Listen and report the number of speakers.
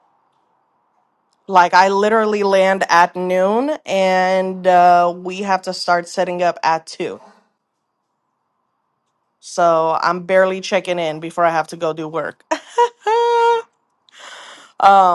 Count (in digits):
1